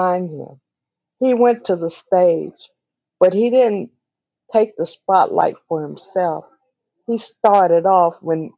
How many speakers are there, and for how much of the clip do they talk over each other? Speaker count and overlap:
1, no overlap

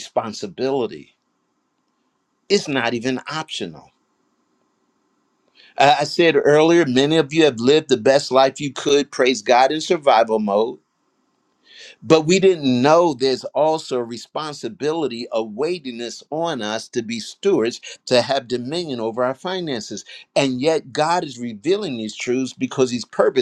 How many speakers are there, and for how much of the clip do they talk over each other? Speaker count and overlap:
1, no overlap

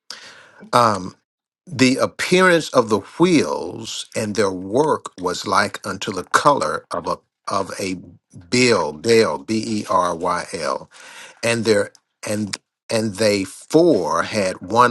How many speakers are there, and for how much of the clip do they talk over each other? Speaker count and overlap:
1, no overlap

